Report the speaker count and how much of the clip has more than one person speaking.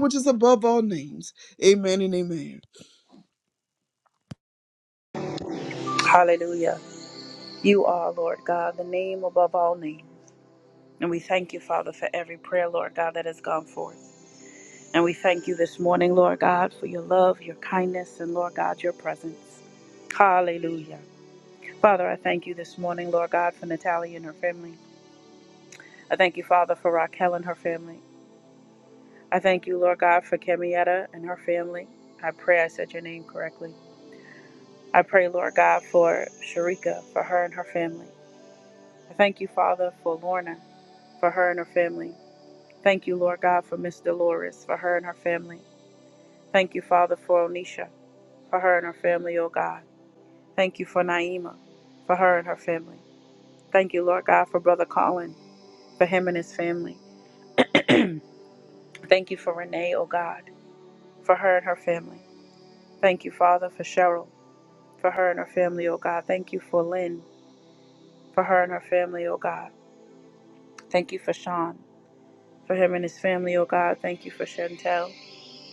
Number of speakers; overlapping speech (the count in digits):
2, no overlap